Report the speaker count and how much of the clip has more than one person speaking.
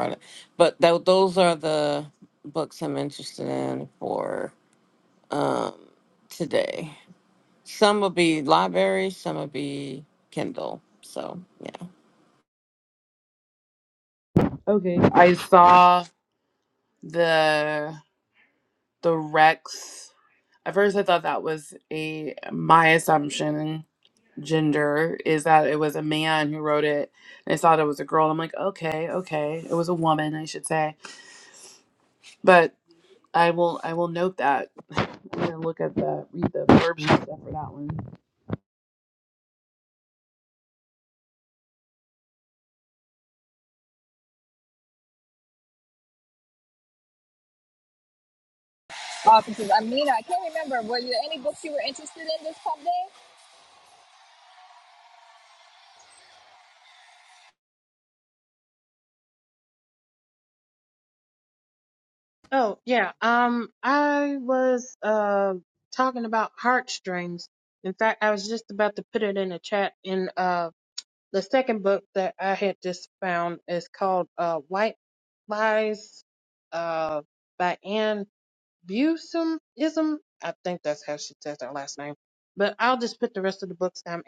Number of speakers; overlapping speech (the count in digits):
4, no overlap